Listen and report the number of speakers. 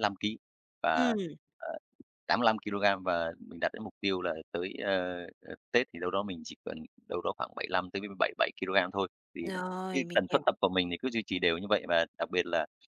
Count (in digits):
2